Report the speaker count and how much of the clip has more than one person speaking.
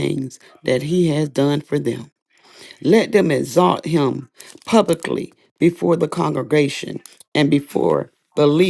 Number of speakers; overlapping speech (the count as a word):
one, no overlap